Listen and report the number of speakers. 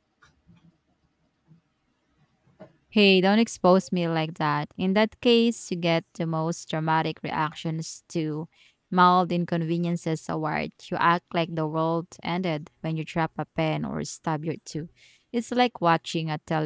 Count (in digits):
1